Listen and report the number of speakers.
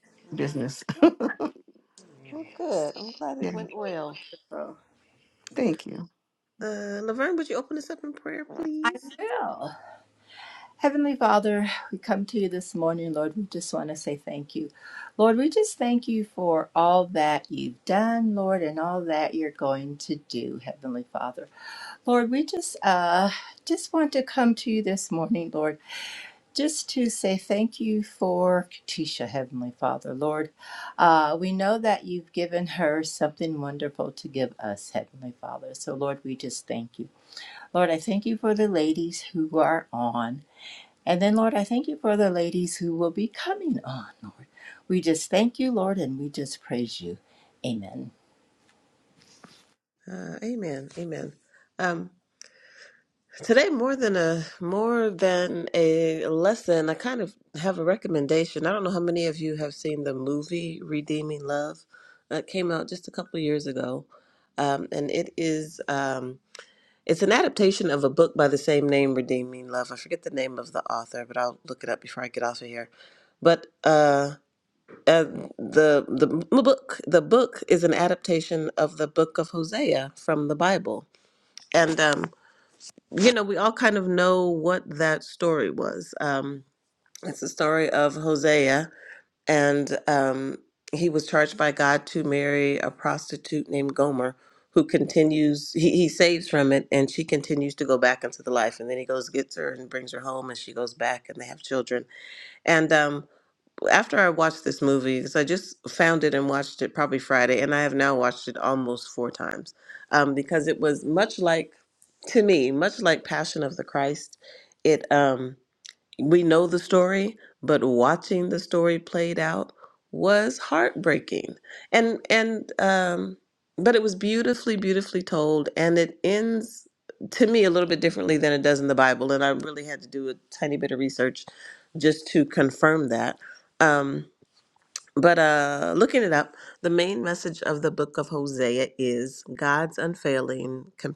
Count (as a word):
three